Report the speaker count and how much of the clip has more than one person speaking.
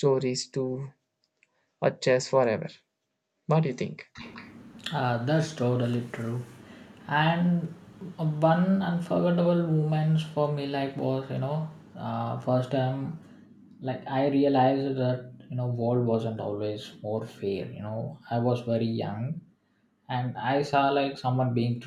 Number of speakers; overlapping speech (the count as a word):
two, no overlap